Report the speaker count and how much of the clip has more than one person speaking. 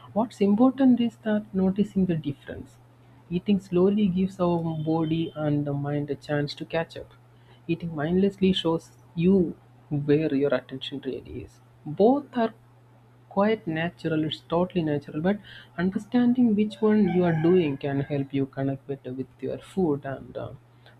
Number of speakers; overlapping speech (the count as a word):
one, no overlap